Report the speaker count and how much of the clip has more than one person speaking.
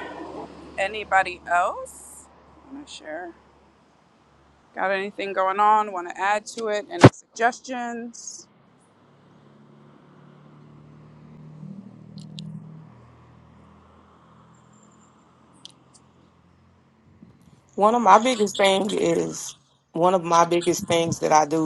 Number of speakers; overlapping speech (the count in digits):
2, no overlap